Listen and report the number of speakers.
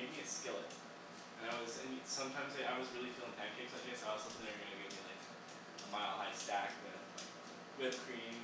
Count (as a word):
one